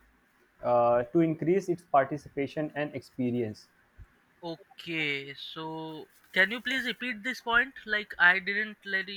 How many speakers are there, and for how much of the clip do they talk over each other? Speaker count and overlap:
two, no overlap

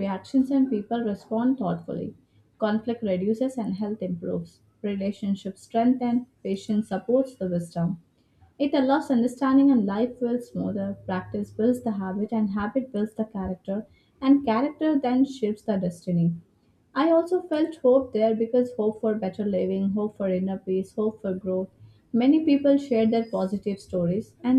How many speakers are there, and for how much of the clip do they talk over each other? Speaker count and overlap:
one, no overlap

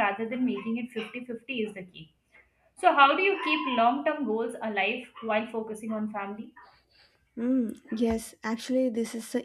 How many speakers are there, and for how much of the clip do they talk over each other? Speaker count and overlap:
two, no overlap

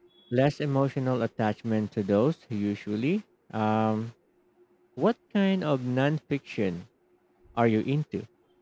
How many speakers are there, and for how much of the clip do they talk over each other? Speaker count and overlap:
one, no overlap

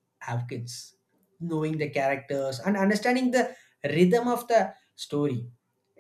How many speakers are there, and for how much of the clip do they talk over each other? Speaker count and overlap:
one, no overlap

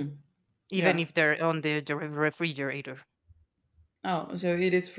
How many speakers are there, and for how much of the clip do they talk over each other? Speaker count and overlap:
two, about 6%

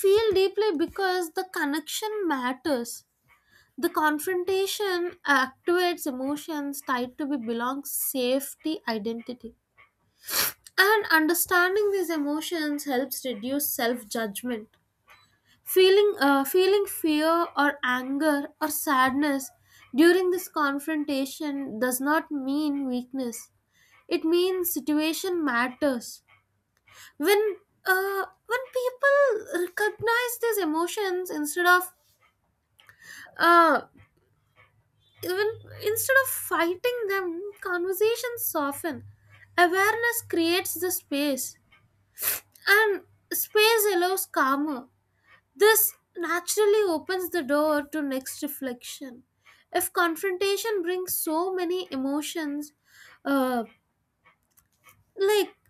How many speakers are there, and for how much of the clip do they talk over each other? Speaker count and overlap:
one, no overlap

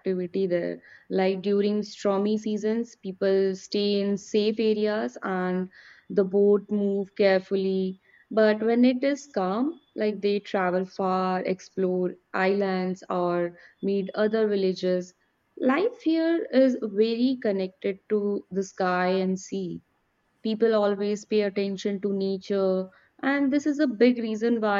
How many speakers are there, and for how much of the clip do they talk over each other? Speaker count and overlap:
one, no overlap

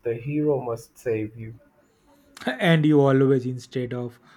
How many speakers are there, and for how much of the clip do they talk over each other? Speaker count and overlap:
two, no overlap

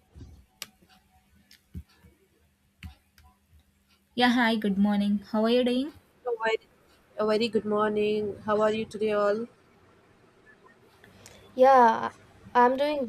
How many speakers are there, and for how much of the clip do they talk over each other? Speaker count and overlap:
three, no overlap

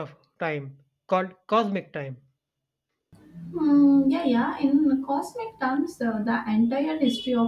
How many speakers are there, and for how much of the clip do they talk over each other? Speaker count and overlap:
two, no overlap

